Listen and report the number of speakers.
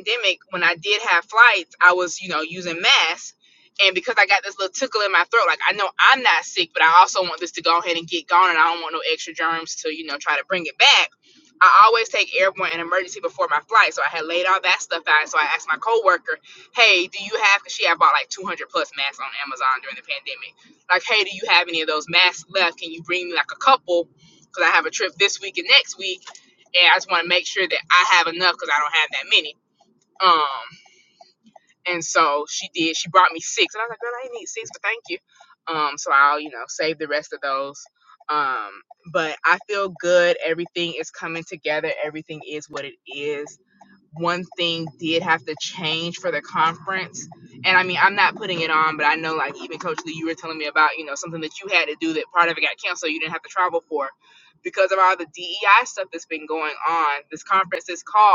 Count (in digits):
1